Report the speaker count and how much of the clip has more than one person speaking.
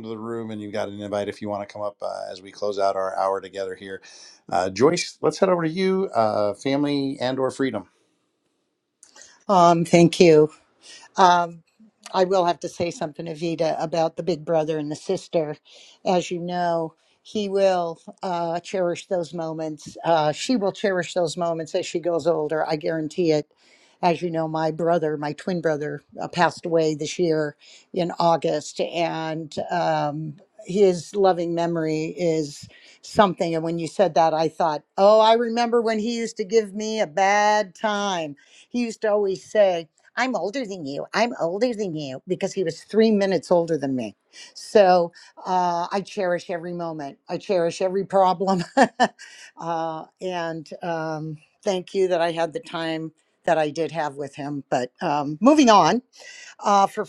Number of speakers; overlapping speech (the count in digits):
2, no overlap